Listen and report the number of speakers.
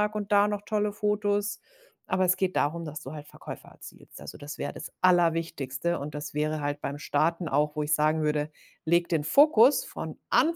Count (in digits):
1